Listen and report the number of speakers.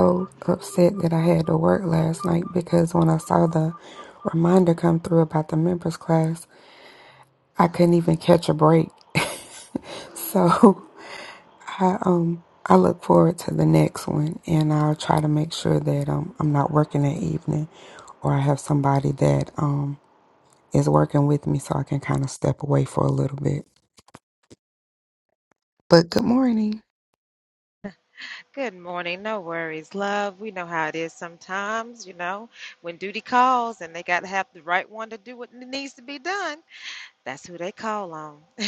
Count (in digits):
2